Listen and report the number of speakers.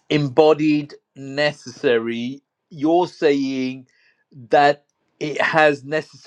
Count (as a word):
one